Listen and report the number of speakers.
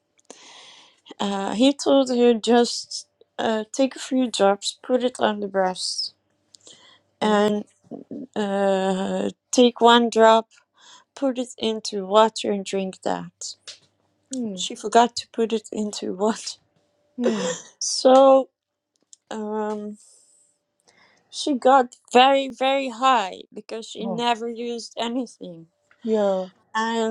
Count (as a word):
two